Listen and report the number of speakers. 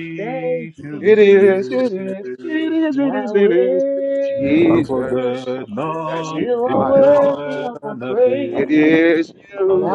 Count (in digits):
3